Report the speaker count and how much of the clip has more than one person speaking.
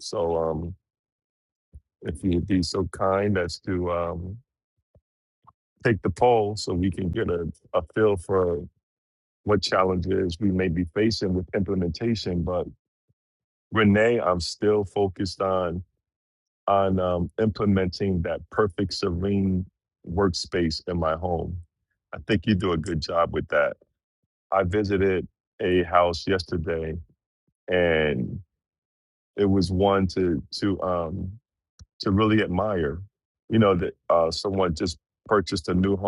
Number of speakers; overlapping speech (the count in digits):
1, no overlap